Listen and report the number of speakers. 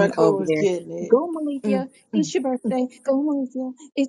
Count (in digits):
2